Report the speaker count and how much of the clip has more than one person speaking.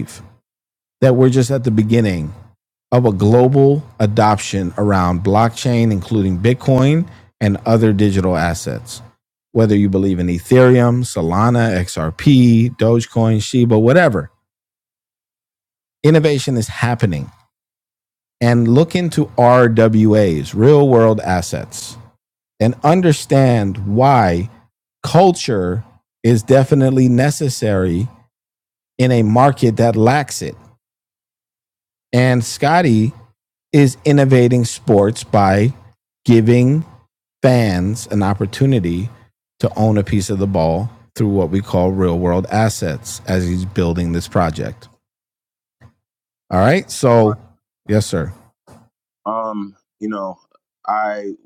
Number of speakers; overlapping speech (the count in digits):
2, about 1%